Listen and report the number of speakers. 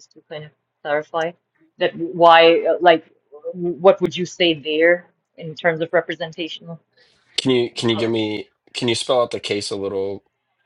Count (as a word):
two